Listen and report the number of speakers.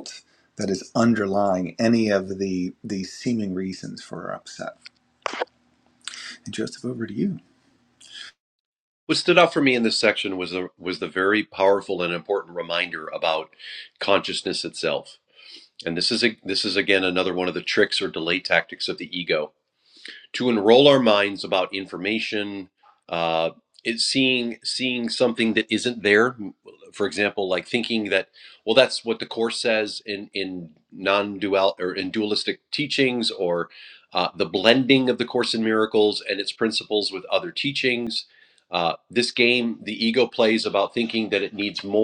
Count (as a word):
two